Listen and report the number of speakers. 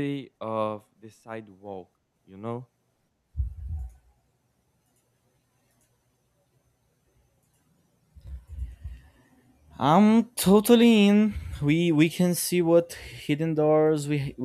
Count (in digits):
2